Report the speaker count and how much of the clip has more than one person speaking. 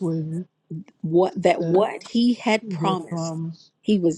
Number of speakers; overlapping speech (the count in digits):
2, about 21%